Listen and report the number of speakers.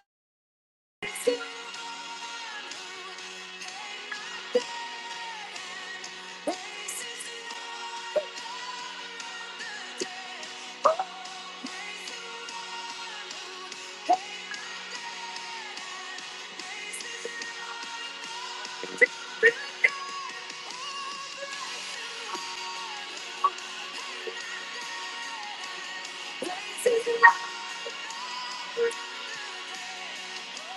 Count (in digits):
0